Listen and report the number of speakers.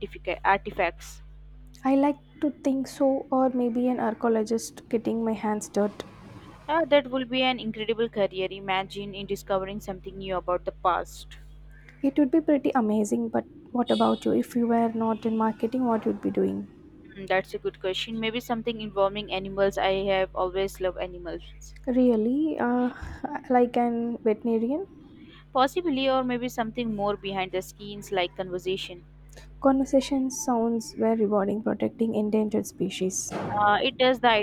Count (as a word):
two